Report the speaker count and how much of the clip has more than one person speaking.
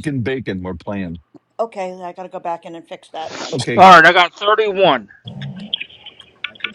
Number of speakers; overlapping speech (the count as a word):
three, about 2%